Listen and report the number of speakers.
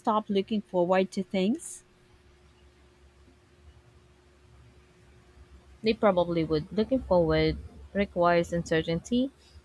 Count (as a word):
two